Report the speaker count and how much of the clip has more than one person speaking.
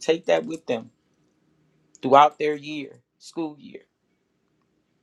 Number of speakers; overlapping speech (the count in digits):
1, no overlap